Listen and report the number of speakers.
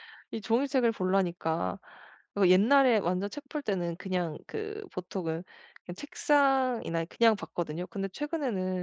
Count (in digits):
1